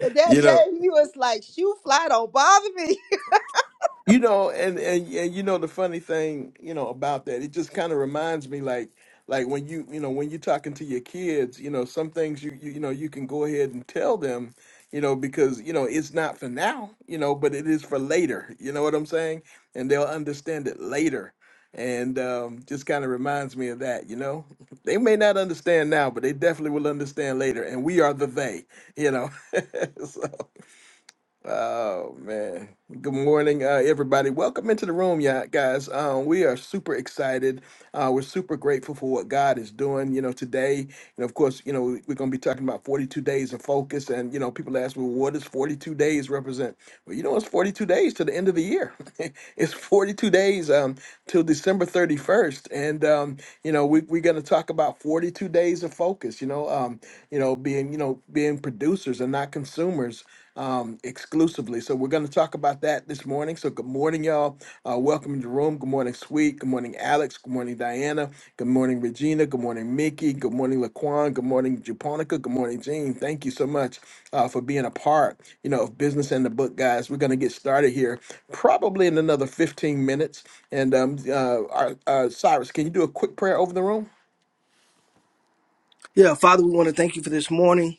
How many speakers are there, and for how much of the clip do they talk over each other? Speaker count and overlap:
3, under 1%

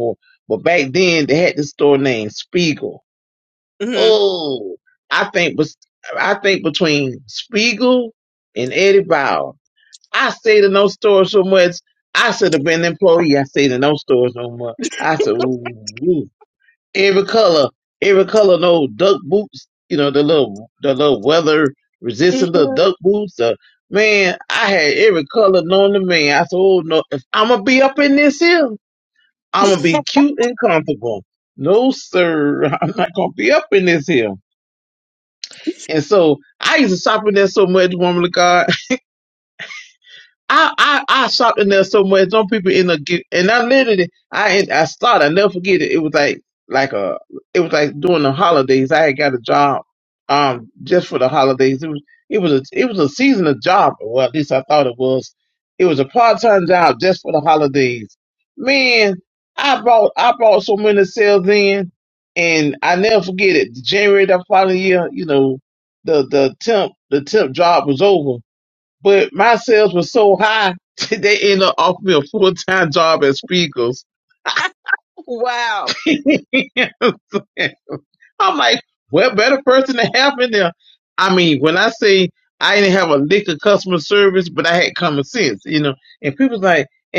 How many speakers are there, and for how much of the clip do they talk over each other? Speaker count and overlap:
2, about 1%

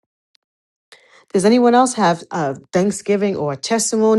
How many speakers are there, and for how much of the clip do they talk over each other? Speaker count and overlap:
1, no overlap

